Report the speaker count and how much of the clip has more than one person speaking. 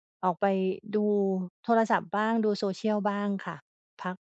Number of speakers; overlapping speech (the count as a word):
one, no overlap